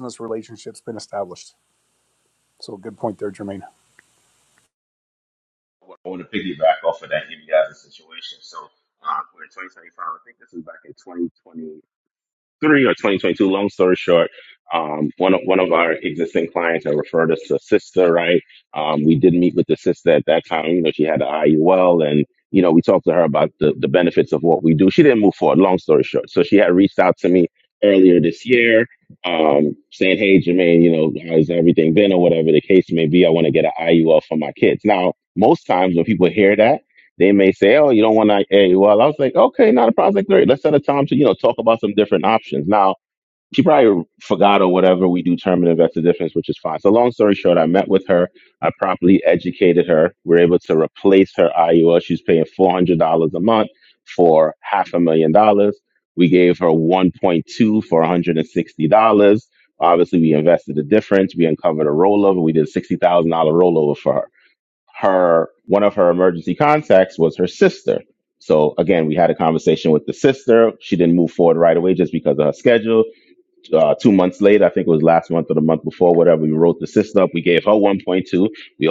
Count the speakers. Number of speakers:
2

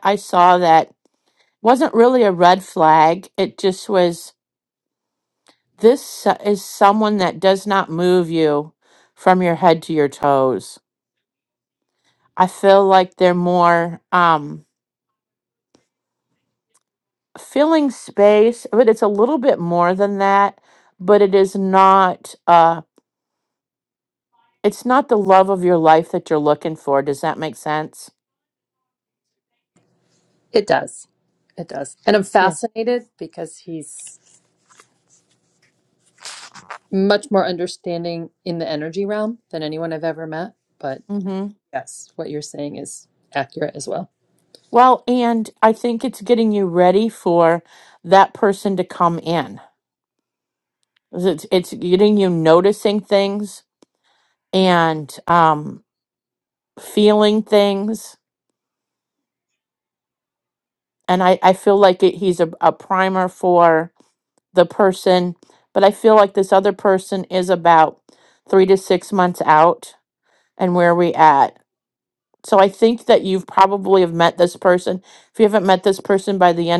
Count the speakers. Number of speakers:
2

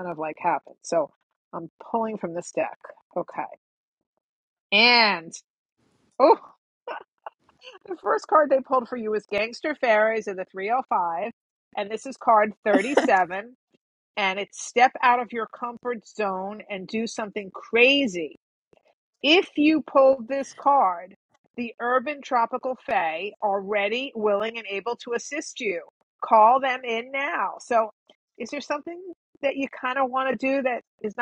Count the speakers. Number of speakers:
1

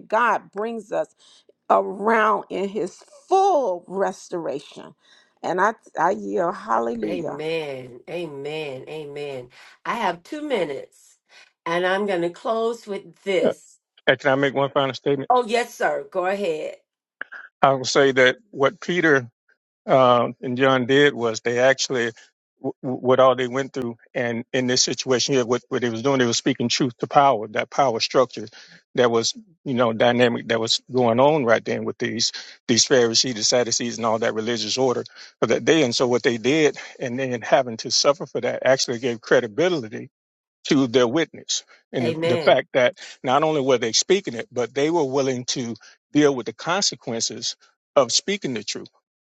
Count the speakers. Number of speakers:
3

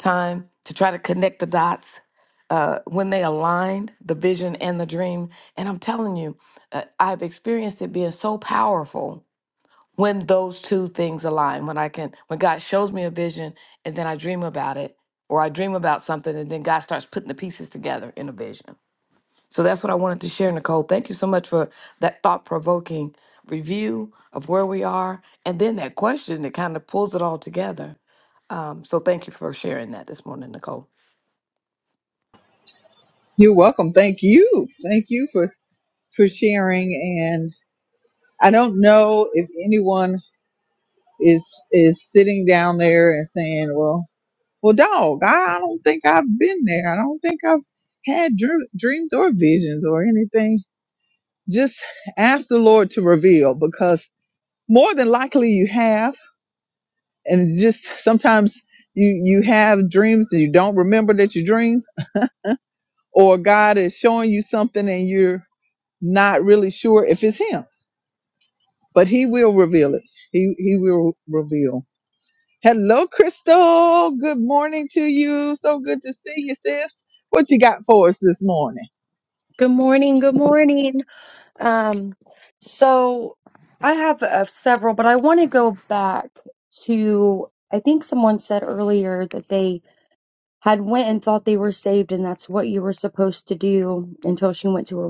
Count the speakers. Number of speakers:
3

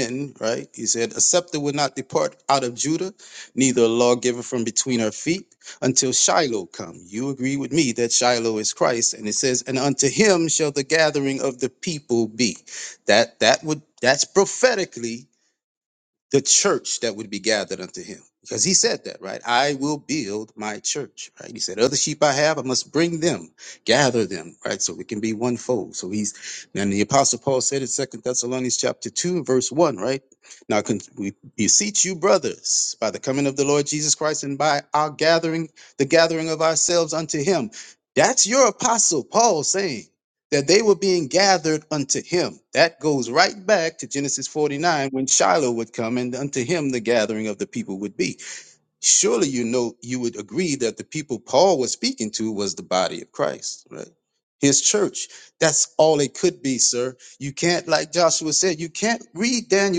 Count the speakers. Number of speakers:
1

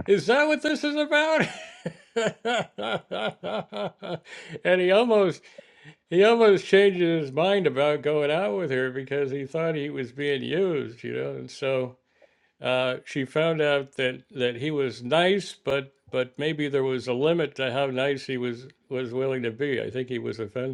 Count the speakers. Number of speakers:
1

